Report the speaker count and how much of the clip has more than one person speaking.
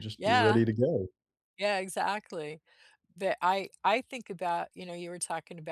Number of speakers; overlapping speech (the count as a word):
two, about 8%